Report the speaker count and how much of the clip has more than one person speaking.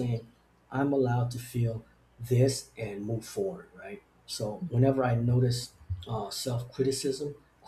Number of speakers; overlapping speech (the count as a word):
one, no overlap